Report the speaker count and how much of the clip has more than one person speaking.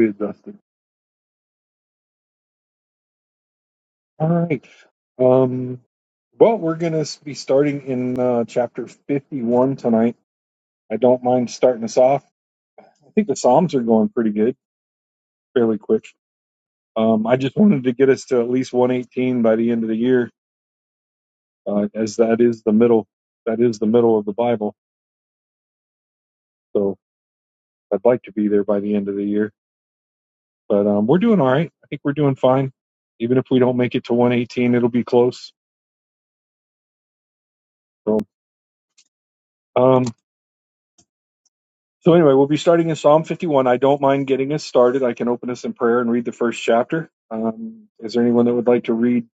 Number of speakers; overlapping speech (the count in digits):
1, no overlap